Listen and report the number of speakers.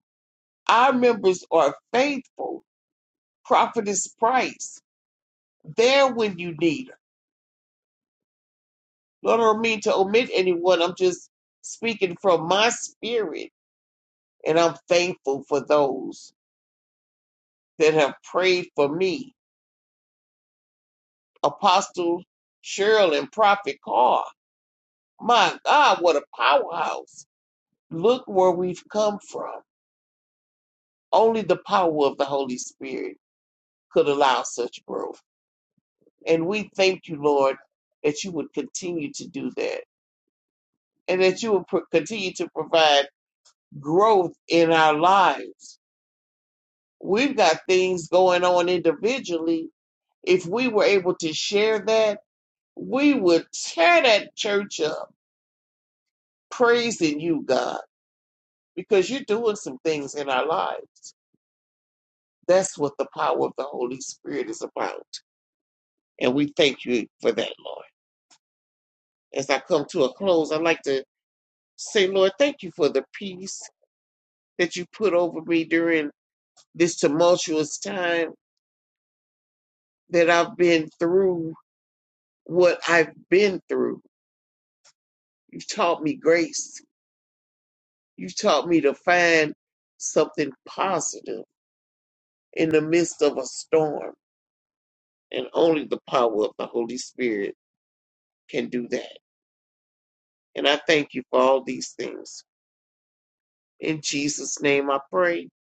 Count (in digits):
1